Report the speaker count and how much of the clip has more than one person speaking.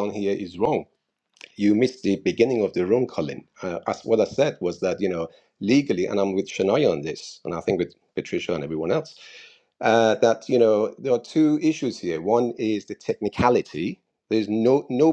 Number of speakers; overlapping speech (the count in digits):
1, no overlap